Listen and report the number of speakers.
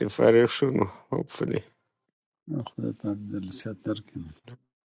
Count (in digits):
2